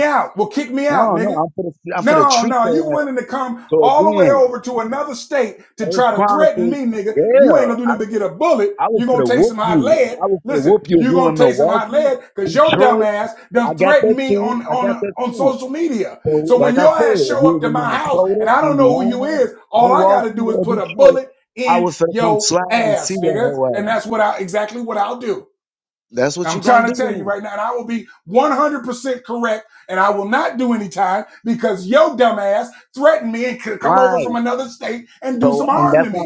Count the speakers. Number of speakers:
2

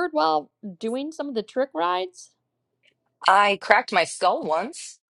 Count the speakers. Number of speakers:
2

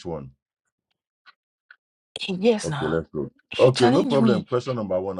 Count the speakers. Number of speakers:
2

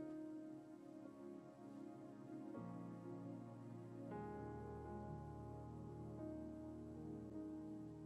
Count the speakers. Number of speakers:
0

